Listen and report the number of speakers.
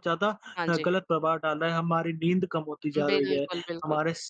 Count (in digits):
2